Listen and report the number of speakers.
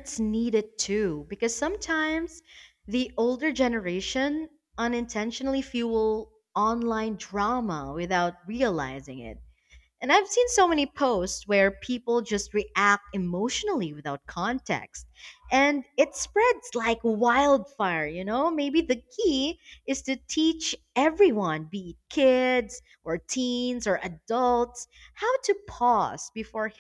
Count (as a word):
one